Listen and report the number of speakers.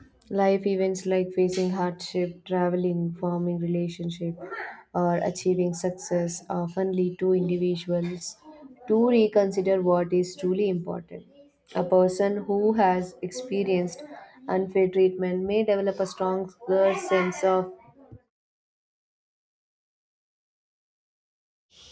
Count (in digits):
1